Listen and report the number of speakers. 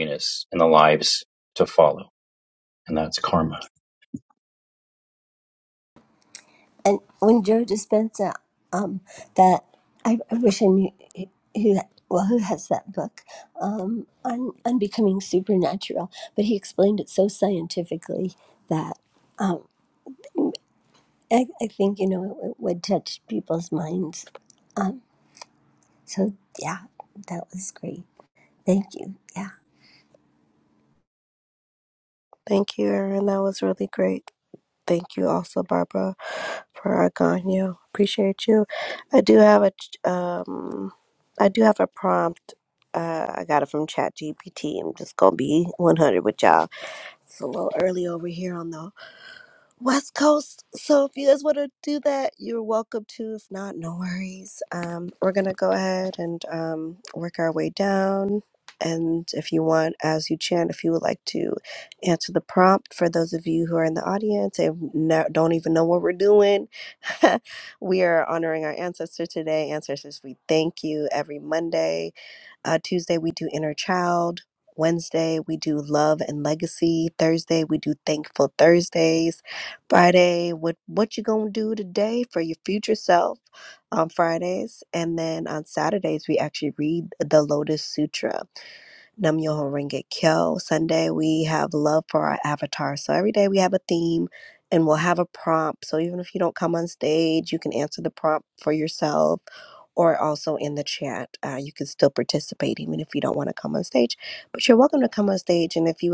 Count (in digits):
3